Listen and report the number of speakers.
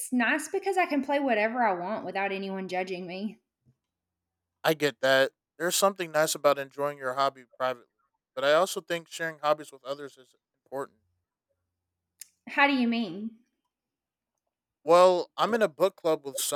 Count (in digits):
2